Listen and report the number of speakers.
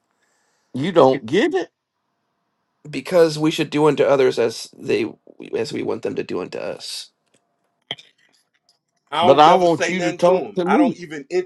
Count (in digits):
3